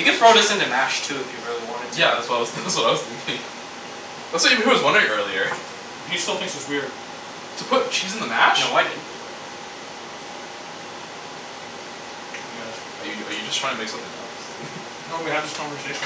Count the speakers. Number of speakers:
3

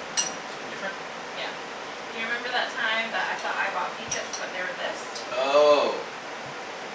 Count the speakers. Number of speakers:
2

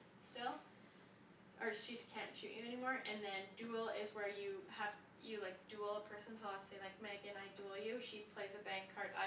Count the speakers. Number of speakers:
1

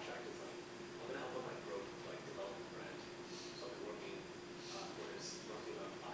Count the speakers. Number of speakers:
1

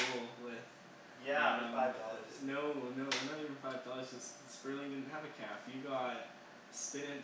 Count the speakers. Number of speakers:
2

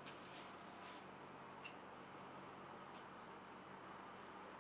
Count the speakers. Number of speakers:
0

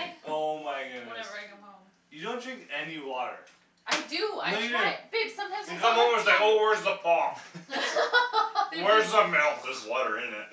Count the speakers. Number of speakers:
4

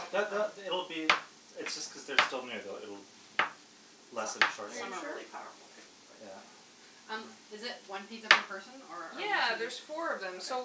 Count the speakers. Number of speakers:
3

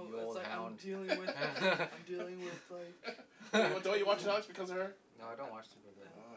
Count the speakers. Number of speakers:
3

